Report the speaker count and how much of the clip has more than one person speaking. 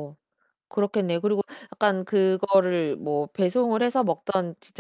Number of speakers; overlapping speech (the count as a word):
one, no overlap